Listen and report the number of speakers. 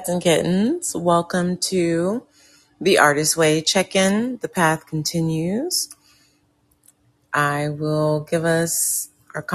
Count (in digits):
1